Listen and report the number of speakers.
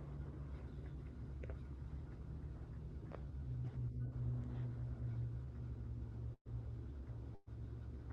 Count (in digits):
0